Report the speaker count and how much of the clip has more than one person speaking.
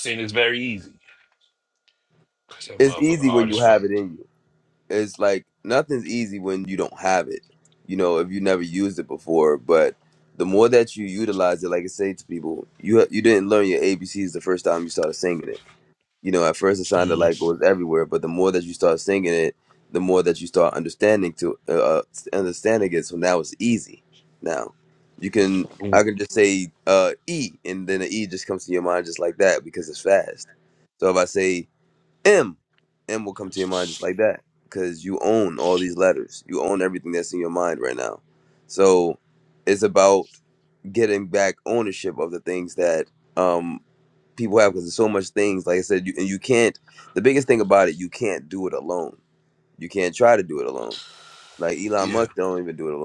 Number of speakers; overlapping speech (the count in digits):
2, about 4%